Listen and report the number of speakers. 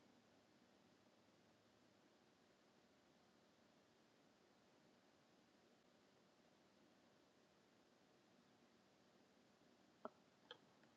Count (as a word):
zero